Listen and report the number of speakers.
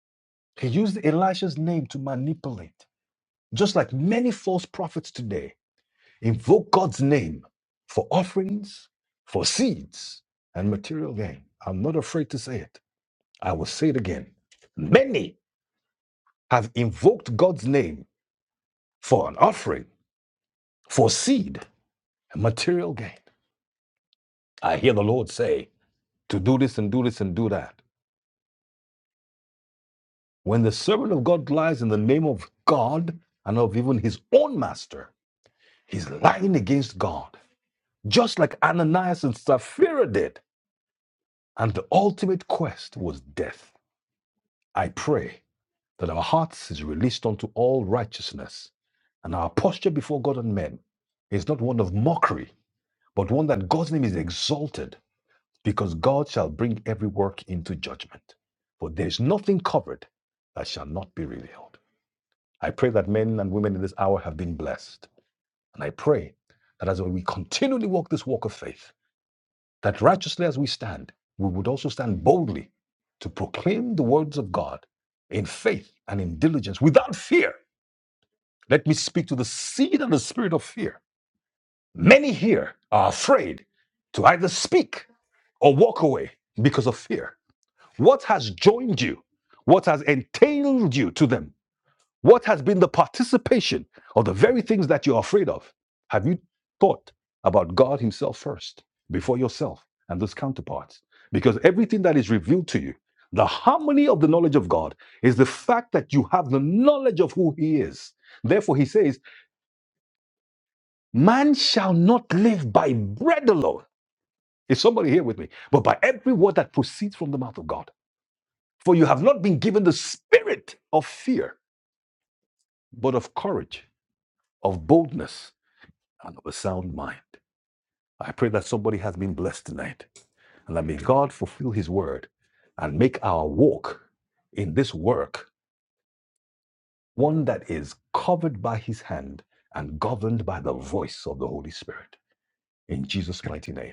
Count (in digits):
1